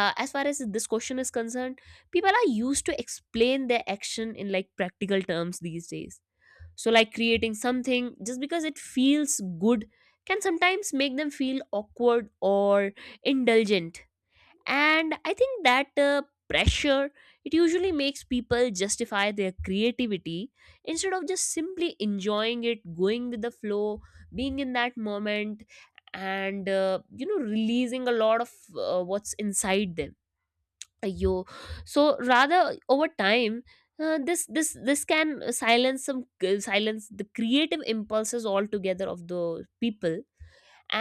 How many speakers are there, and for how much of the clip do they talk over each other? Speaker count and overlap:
one, no overlap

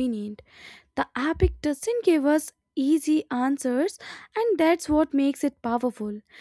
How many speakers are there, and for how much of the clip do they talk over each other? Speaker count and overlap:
one, no overlap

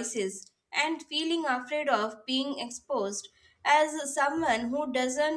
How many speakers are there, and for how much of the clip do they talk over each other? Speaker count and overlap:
one, no overlap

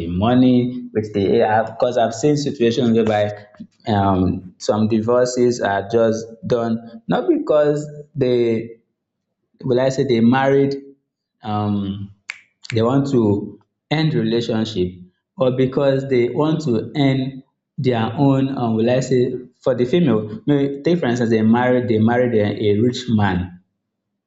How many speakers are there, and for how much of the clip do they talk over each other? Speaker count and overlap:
one, no overlap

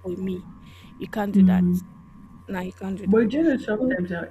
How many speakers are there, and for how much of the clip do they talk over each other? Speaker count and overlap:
two, about 16%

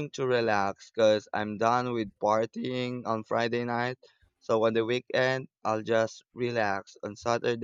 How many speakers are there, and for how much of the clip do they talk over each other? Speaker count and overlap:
one, no overlap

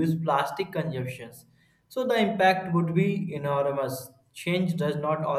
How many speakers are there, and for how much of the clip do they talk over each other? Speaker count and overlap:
one, no overlap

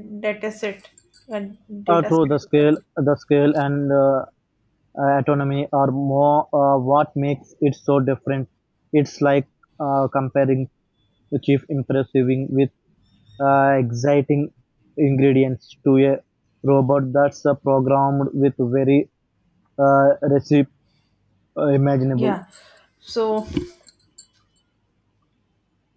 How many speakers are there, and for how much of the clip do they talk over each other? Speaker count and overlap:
two, about 3%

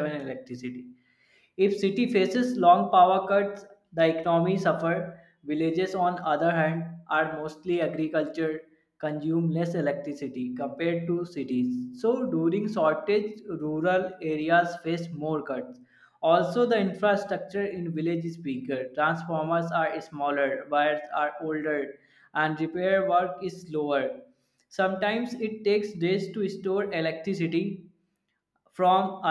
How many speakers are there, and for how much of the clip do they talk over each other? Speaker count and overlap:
one, no overlap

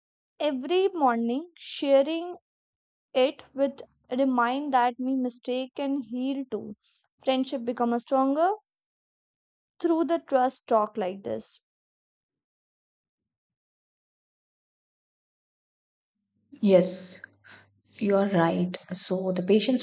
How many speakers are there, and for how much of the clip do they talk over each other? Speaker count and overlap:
two, no overlap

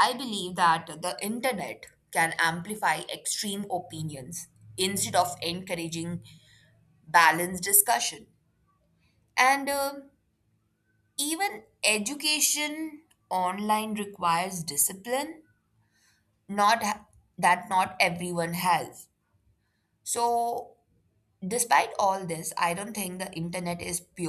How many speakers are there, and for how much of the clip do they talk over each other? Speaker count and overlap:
one, no overlap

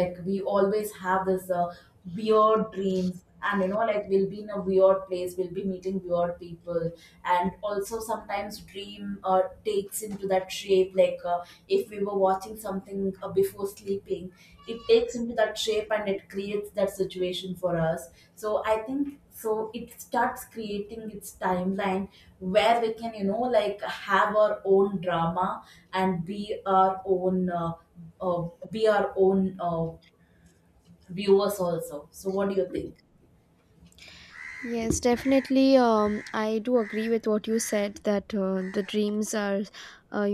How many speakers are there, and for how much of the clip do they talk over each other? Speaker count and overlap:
two, no overlap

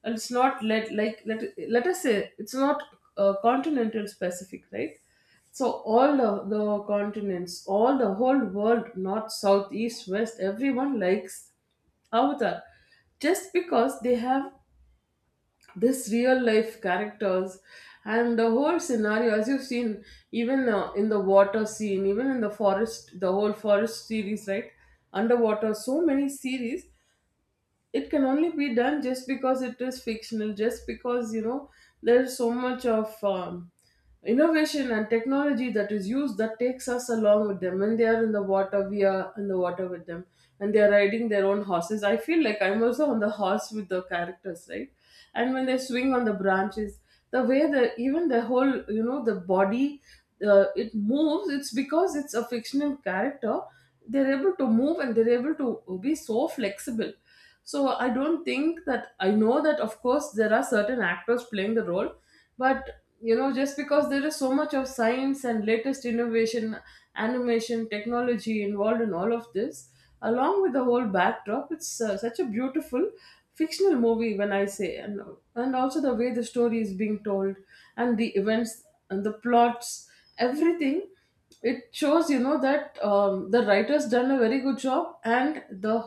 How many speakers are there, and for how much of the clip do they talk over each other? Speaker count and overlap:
one, no overlap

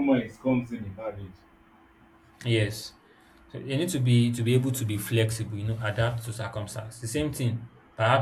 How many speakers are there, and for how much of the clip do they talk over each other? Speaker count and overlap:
two, no overlap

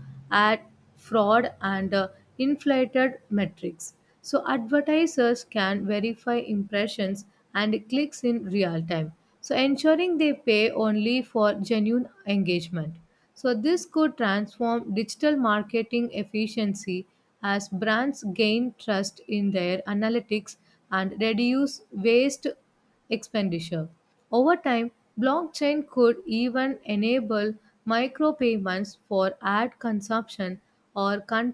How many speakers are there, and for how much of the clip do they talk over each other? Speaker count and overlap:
one, no overlap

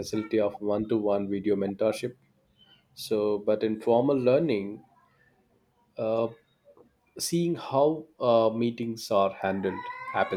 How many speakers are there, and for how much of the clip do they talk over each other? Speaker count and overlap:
one, no overlap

